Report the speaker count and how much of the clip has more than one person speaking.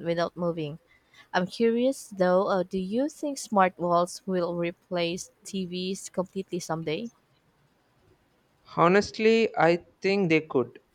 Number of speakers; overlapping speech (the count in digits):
2, no overlap